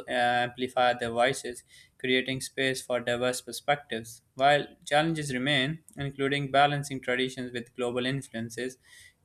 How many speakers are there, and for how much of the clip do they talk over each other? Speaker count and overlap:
1, no overlap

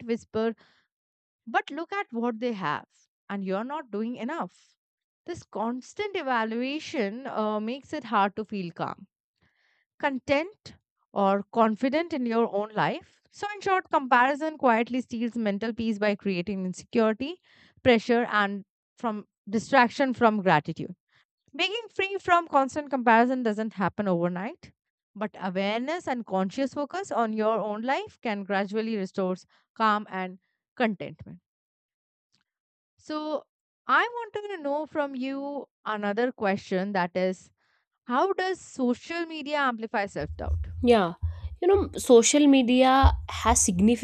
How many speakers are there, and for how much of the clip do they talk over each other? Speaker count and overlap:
2, no overlap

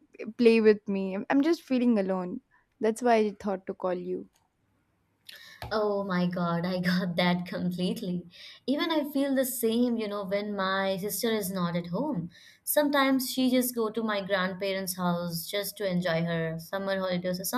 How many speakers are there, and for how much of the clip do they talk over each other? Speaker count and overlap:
2, no overlap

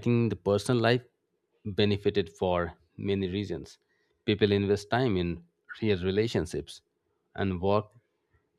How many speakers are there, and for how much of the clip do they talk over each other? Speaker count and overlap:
1, no overlap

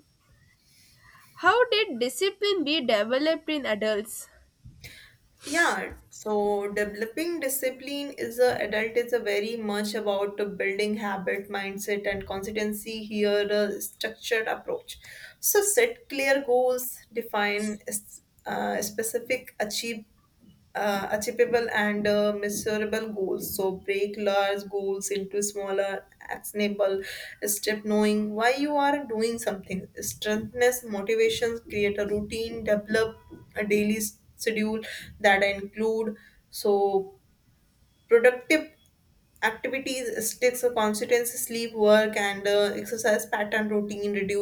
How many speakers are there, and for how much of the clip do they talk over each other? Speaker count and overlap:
2, no overlap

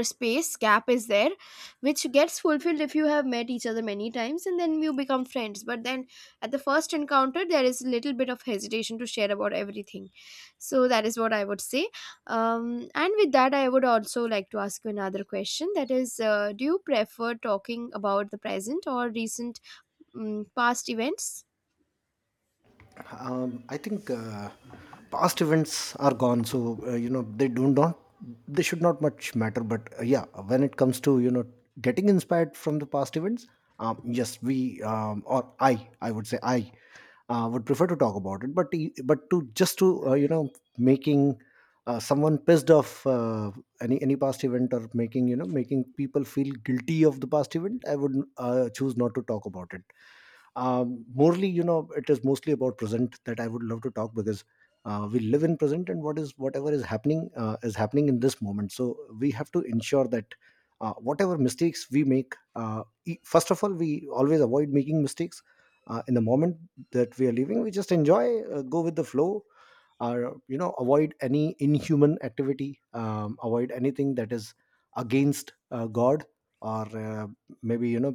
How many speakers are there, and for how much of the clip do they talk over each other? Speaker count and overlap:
2, no overlap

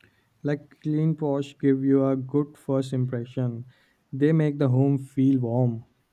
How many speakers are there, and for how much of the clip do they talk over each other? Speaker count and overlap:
1, no overlap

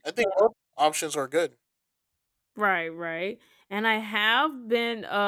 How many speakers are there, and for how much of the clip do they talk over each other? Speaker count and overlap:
2, no overlap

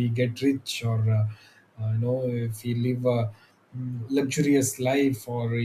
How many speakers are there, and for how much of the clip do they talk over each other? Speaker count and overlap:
1, no overlap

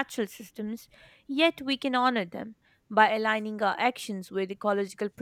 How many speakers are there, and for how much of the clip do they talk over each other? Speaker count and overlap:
1, no overlap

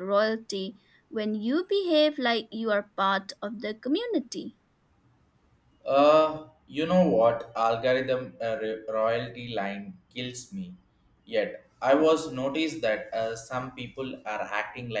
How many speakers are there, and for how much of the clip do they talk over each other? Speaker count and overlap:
2, no overlap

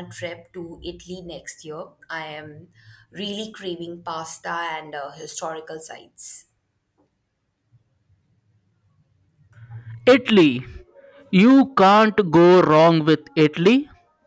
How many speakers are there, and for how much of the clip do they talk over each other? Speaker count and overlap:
2, no overlap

